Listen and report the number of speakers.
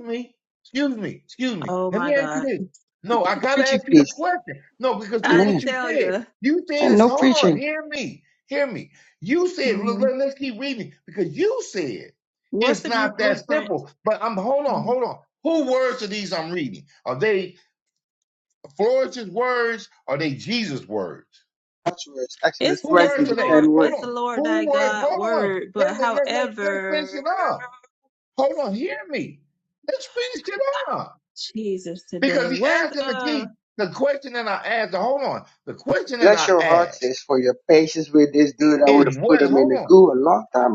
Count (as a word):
three